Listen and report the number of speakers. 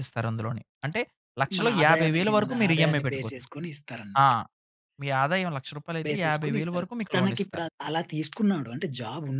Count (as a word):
two